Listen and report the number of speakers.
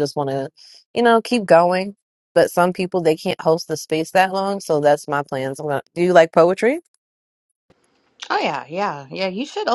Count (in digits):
2